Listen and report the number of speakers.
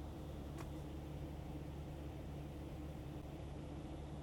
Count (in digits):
0